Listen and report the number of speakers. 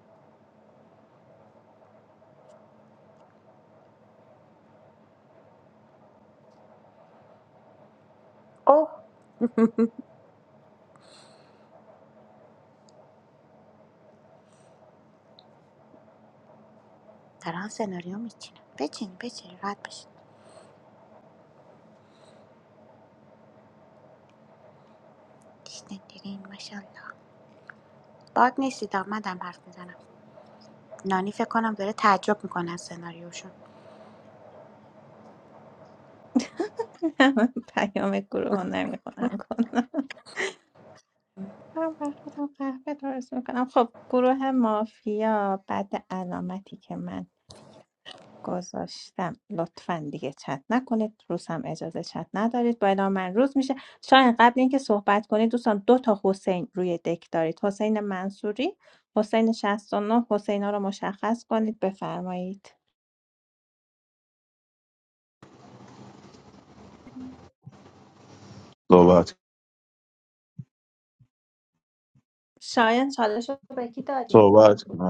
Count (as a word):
three